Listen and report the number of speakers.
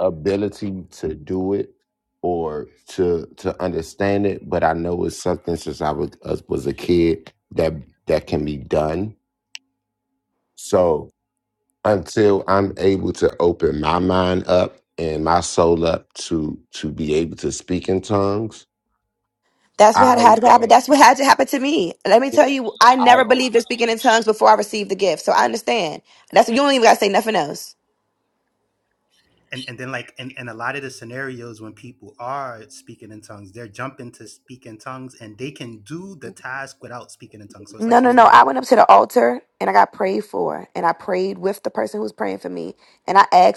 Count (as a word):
three